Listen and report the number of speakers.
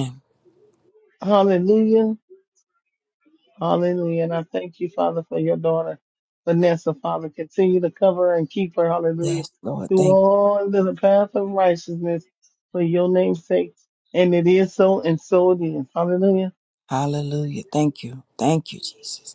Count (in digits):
2